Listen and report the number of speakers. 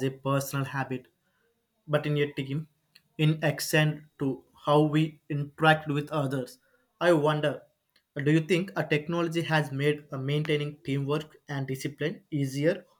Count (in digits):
1